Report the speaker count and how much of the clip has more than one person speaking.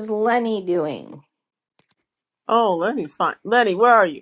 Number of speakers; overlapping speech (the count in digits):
2, no overlap